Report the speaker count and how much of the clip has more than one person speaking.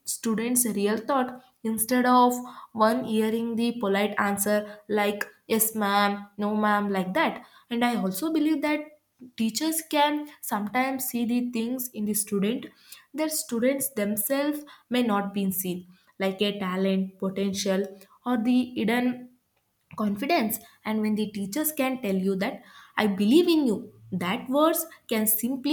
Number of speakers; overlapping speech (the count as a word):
one, no overlap